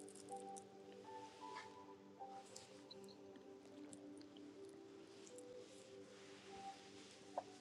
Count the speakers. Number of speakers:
zero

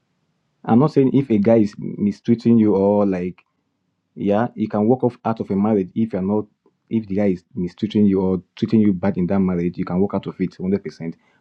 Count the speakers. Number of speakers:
one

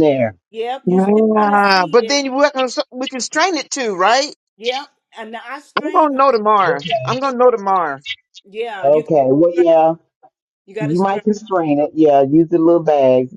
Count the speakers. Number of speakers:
three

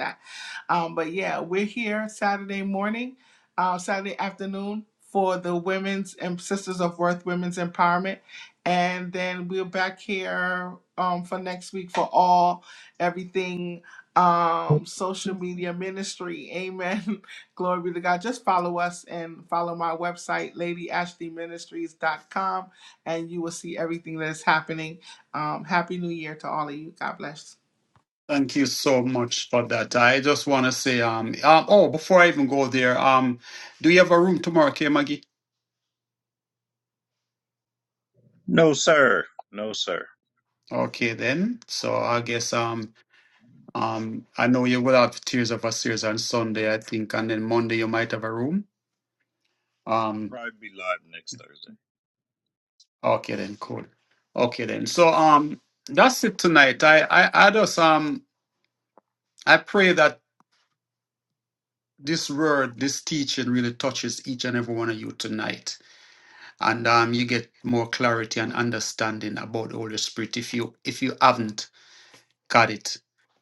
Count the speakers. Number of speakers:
three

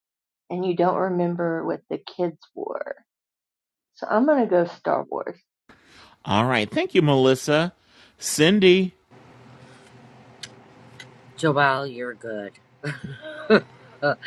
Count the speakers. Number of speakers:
three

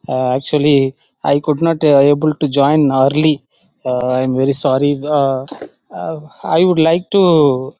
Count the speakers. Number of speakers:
one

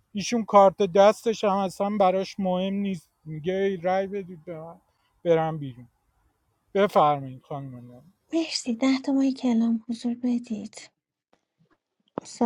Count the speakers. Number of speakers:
two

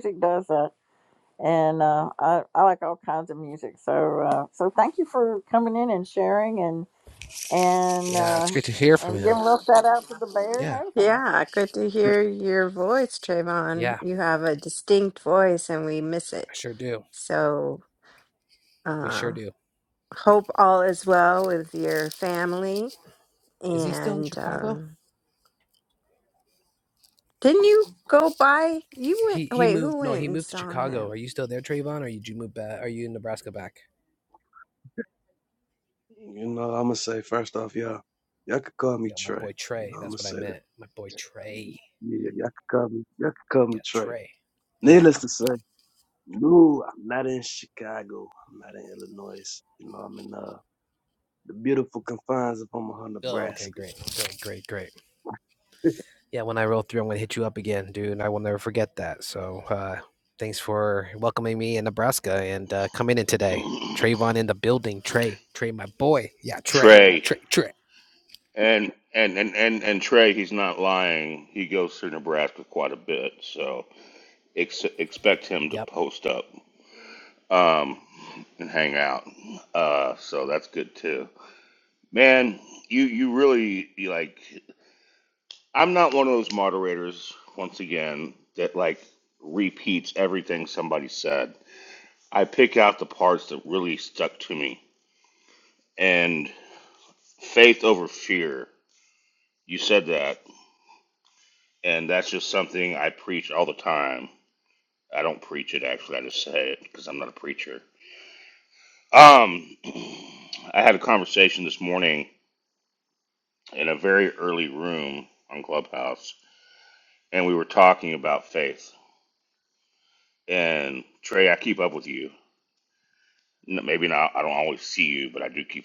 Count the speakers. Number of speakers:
five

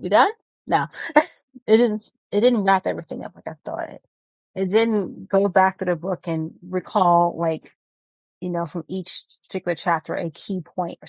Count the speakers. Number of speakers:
one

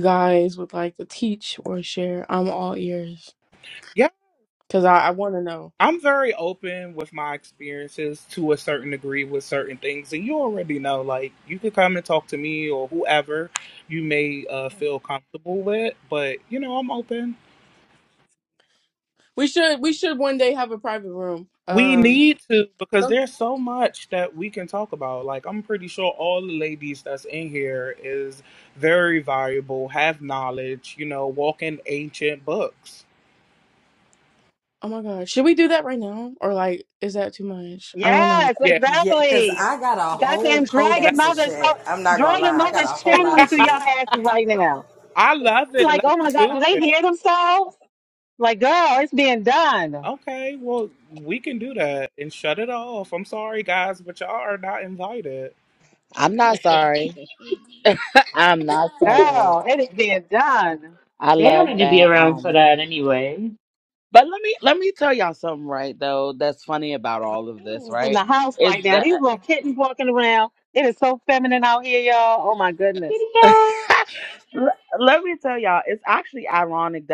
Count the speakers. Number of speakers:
six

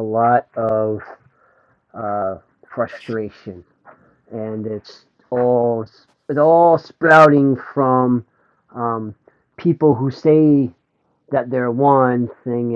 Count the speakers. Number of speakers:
one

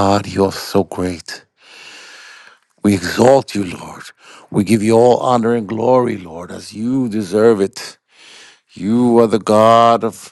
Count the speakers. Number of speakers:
one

